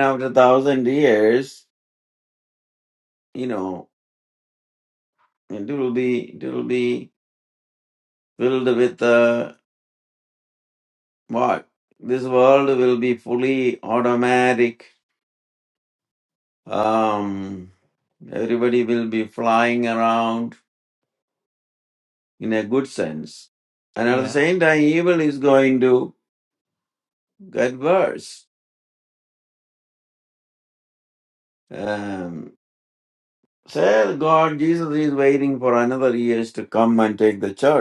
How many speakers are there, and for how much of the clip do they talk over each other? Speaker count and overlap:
1, no overlap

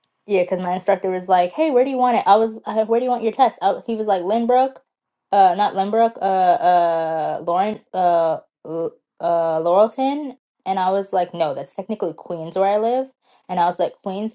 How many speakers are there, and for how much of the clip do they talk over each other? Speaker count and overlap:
1, no overlap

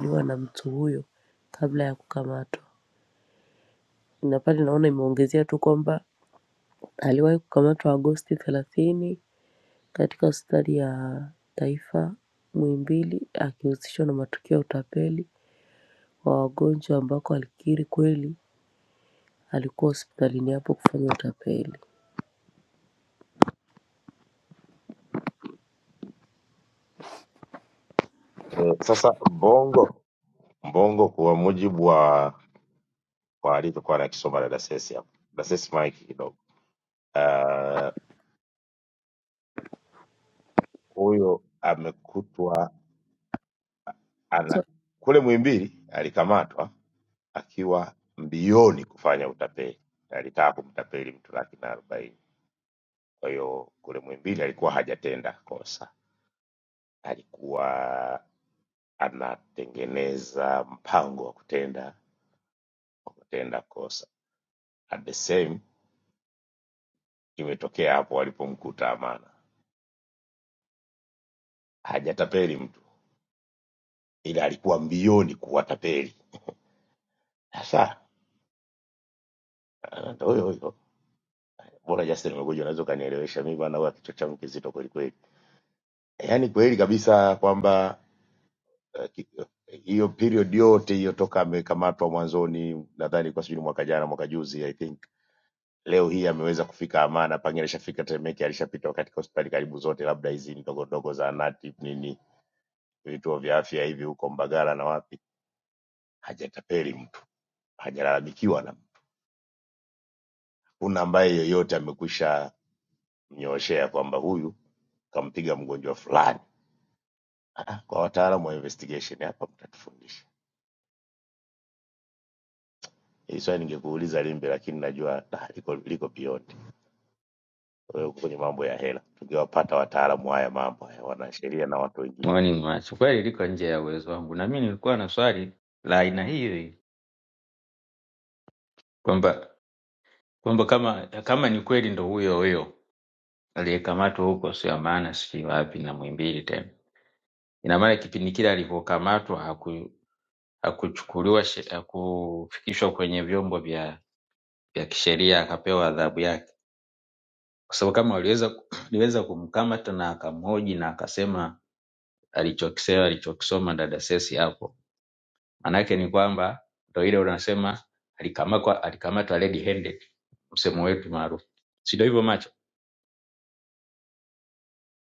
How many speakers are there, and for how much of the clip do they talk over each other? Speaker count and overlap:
3, under 1%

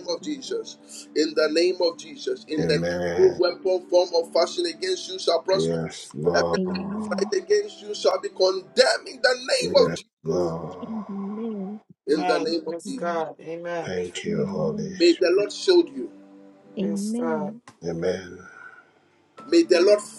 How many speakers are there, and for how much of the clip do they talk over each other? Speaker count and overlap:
4, about 27%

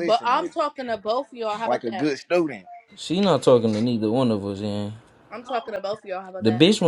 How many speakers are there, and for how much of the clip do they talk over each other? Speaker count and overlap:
3, about 15%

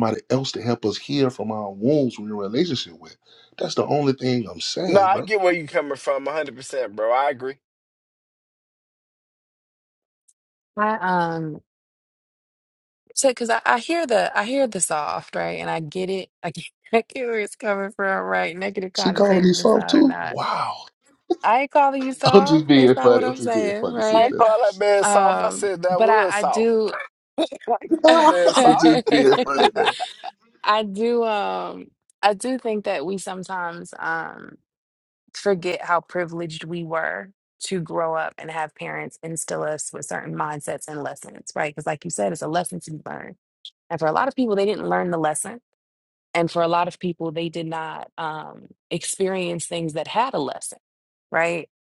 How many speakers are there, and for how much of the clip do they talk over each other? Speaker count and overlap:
3, about 13%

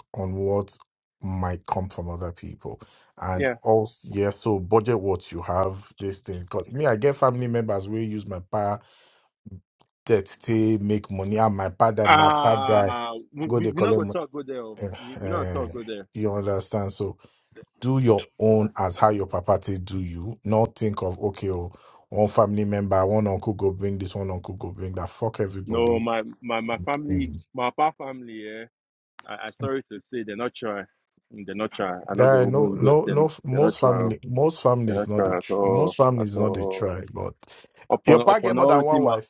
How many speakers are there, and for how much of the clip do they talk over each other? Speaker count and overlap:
2, about 22%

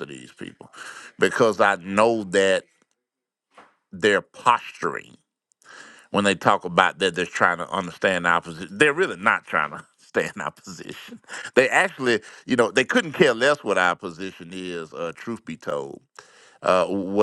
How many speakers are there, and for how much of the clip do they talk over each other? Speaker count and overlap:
1, no overlap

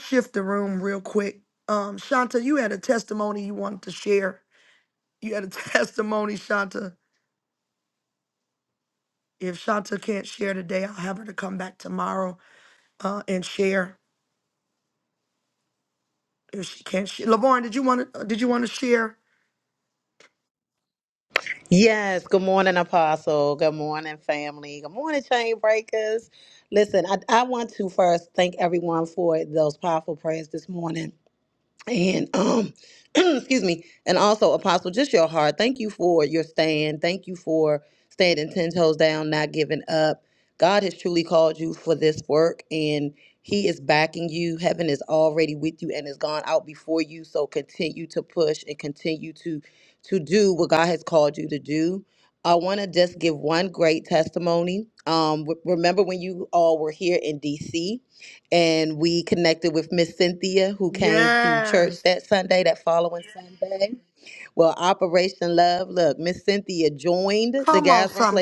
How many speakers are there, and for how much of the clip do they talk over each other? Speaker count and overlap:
2, about 3%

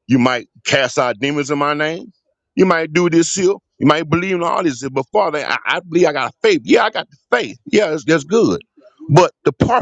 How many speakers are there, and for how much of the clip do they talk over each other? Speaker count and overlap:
1, no overlap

